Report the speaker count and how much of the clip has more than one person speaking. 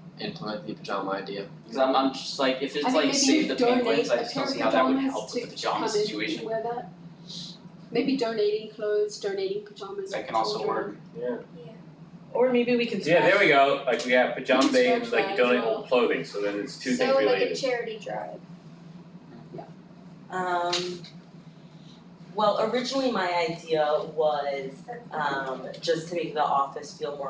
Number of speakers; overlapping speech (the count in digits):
6, about 30%